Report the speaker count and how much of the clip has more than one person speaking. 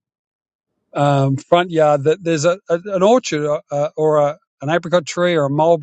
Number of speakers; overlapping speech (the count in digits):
1, no overlap